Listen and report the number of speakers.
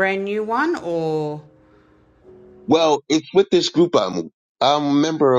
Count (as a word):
two